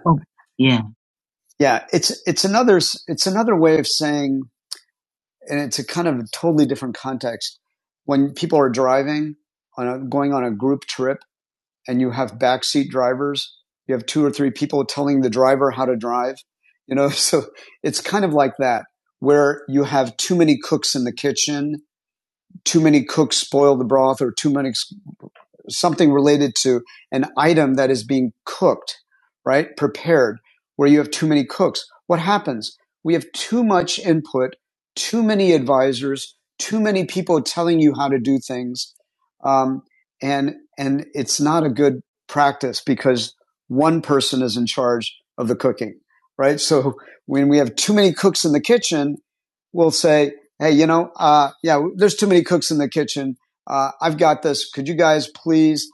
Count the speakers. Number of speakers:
1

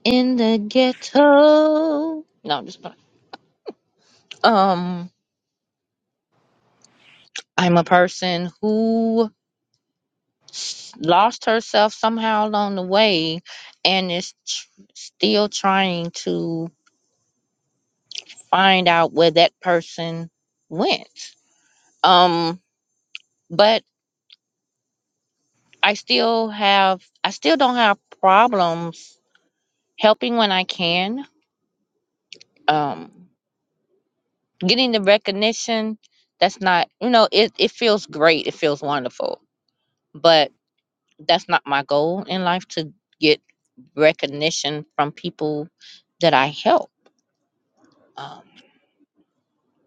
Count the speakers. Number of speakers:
1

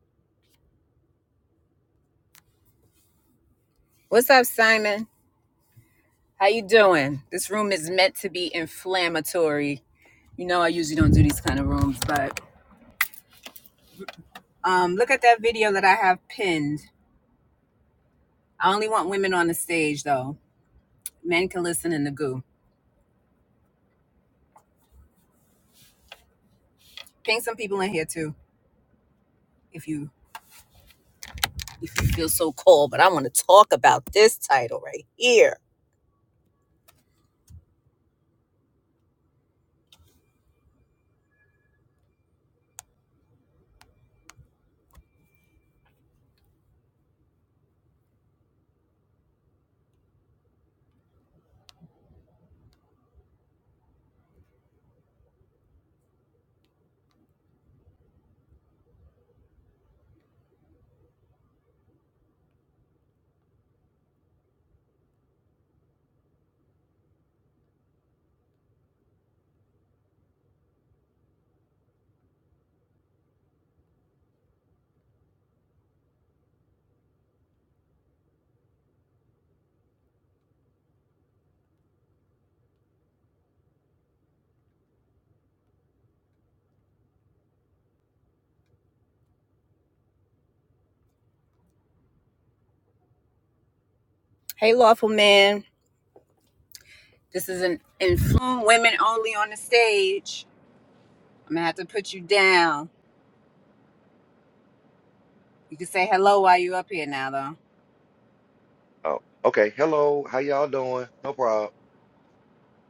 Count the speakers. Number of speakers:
2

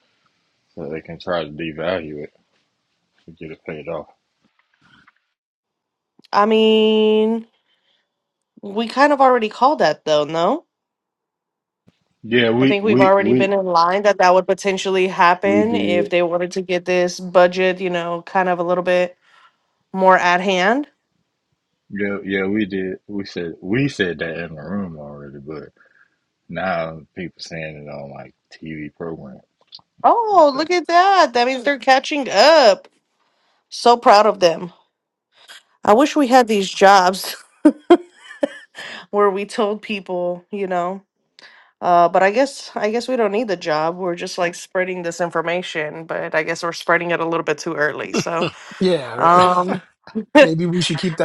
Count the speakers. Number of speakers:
3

